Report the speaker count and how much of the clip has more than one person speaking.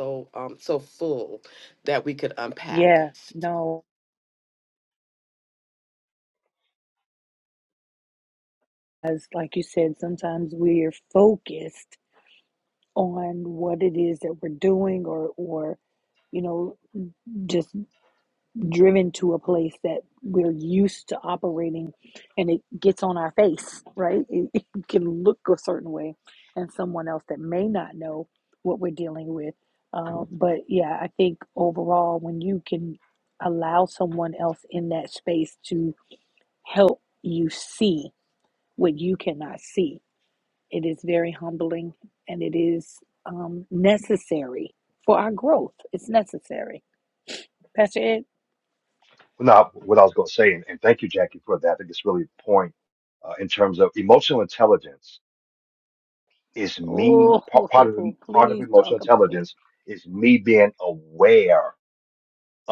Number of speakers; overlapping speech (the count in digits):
3, about 4%